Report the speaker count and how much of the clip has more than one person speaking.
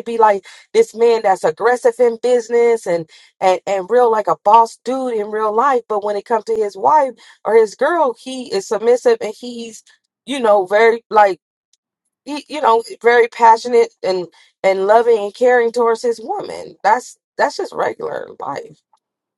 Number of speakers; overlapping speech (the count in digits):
1, no overlap